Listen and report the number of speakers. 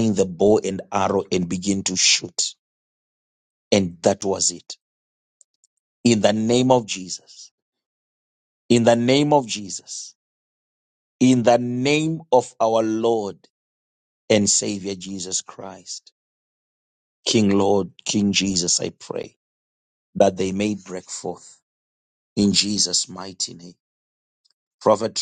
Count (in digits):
1